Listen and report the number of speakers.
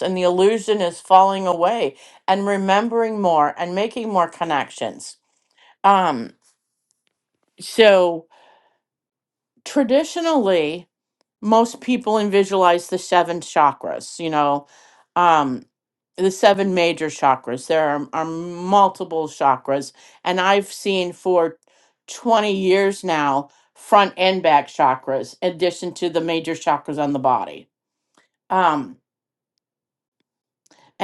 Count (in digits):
1